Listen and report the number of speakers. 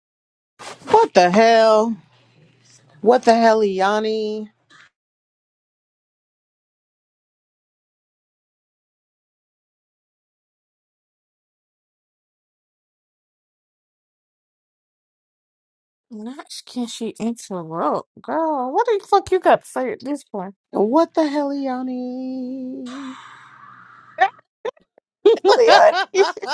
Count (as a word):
two